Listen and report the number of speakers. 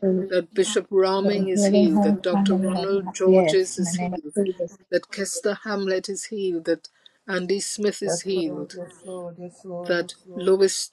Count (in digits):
3